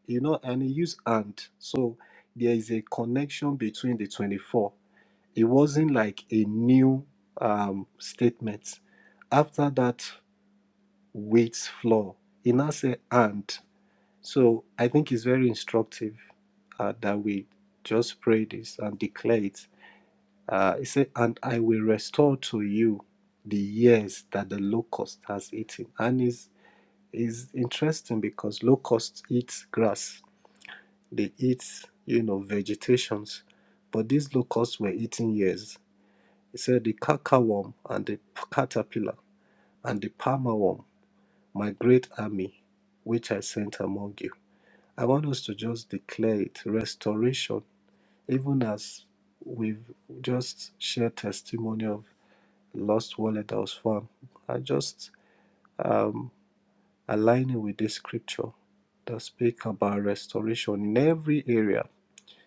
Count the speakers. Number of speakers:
one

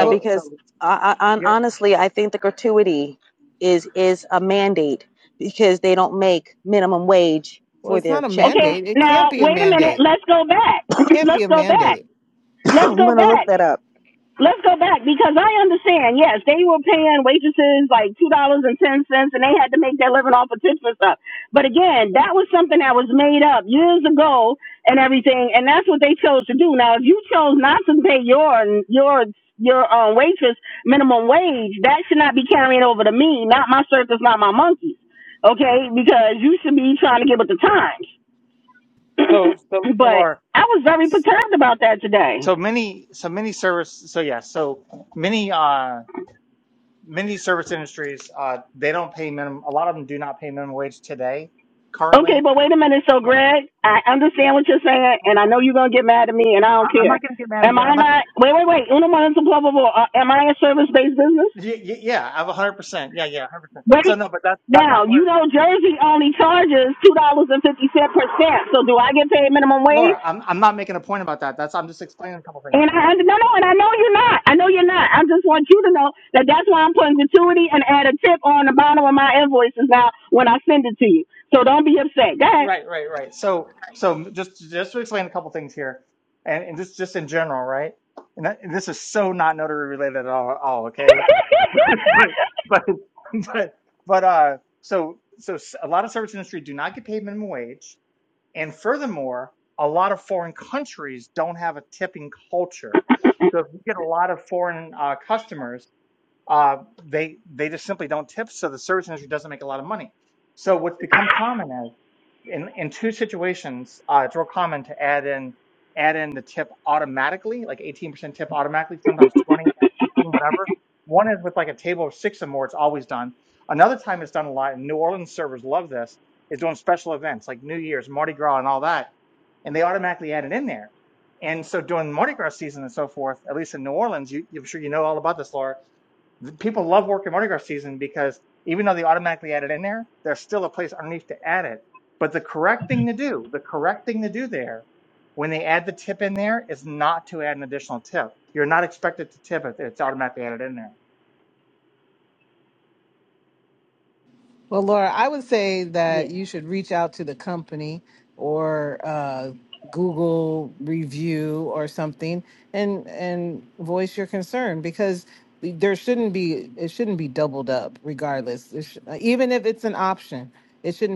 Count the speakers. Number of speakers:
four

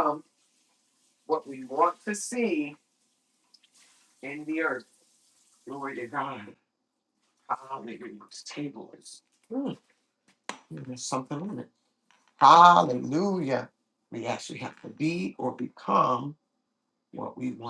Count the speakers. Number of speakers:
one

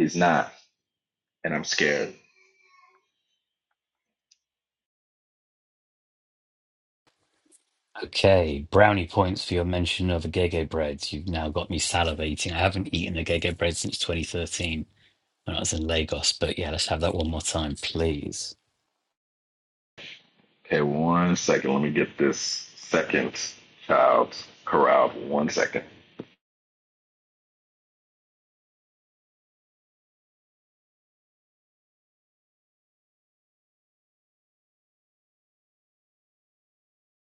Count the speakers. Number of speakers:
two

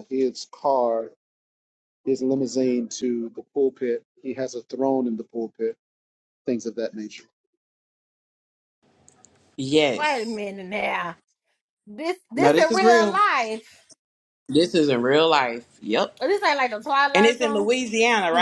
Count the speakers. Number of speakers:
three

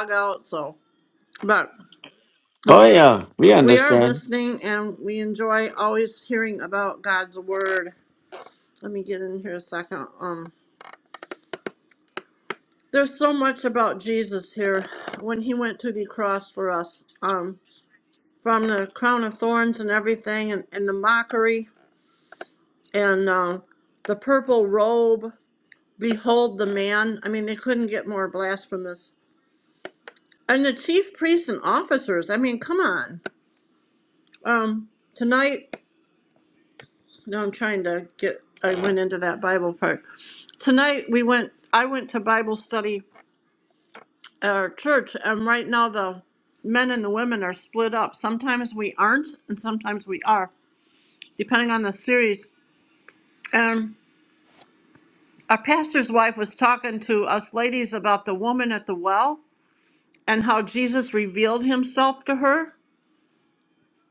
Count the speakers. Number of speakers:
two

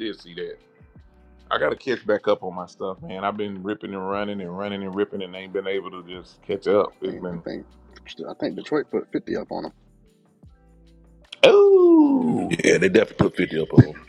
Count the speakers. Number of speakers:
three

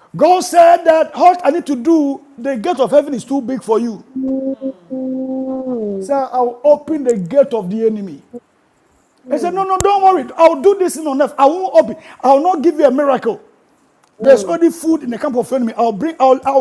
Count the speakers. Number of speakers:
two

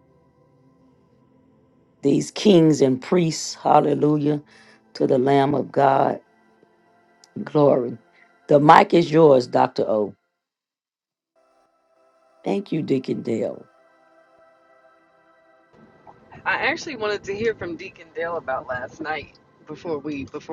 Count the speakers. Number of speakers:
two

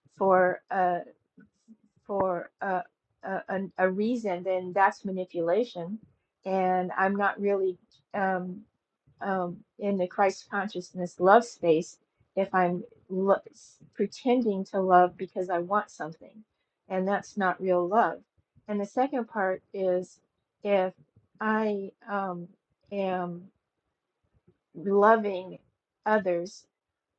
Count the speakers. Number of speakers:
one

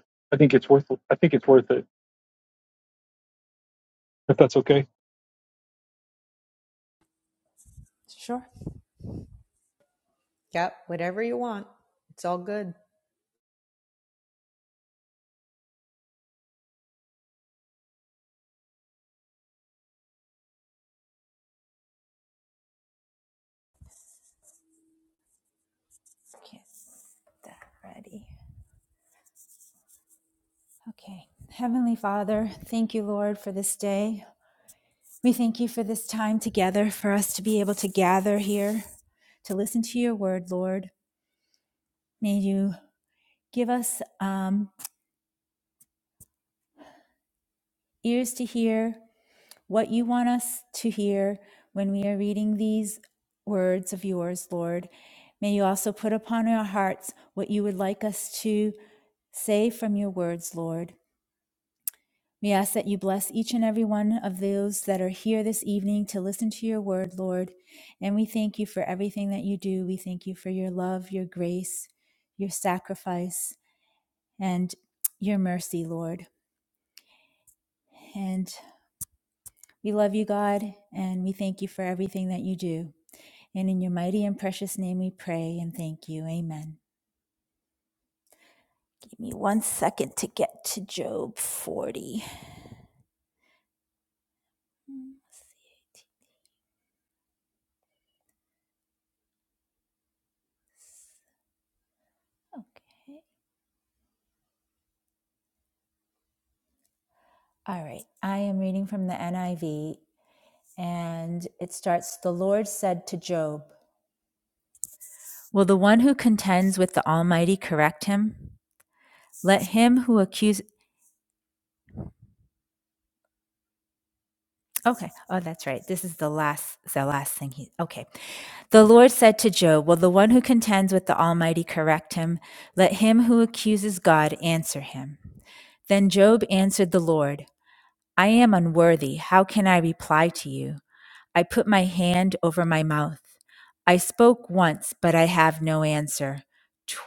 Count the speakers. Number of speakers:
three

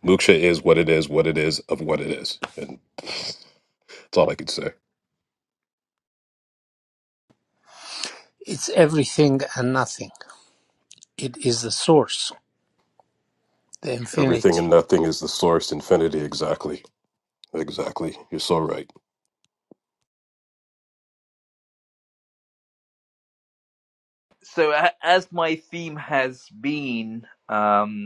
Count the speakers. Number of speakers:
three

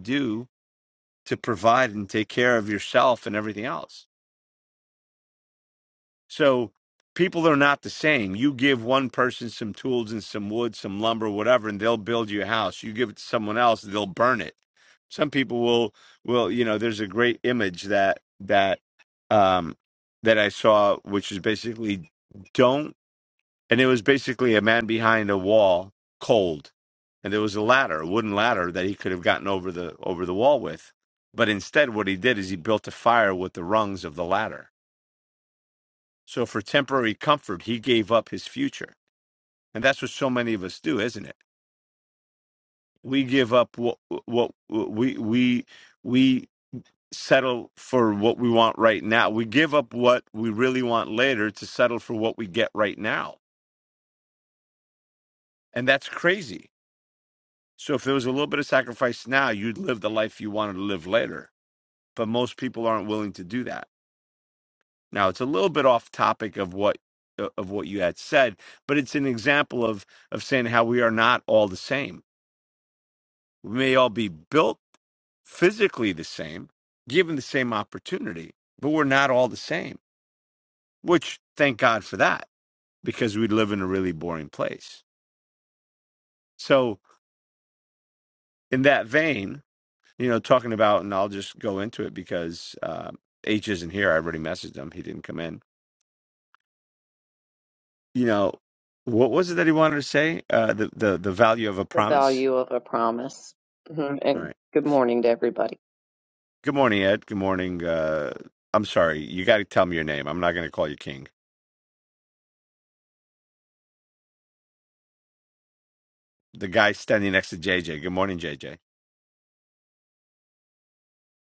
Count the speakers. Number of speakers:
two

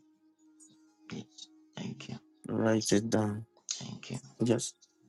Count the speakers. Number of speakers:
two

